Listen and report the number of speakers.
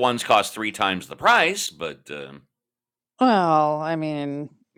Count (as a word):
two